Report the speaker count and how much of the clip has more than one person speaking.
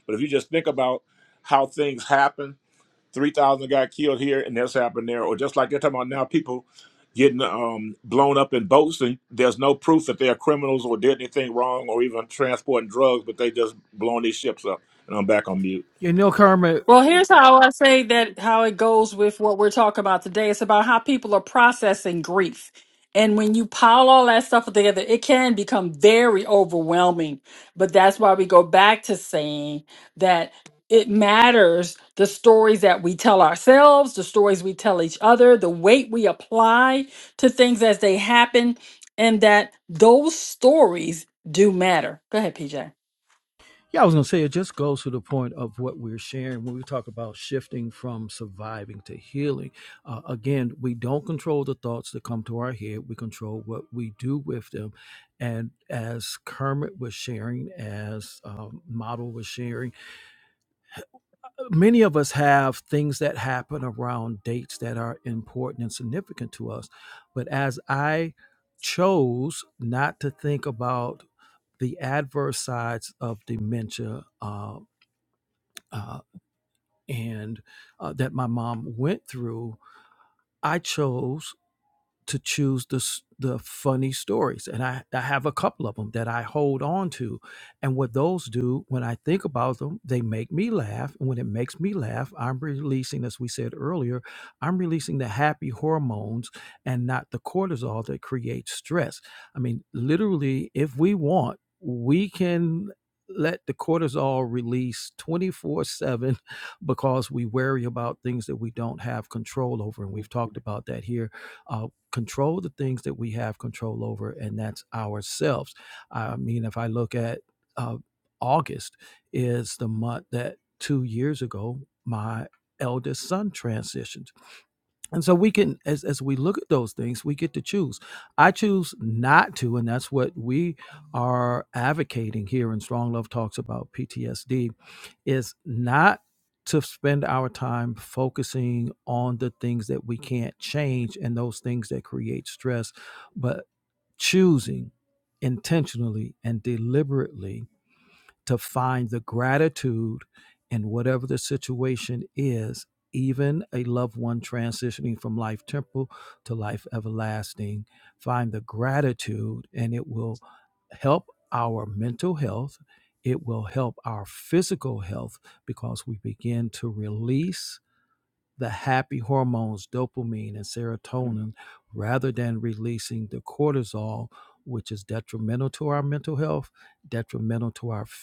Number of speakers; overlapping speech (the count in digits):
3, no overlap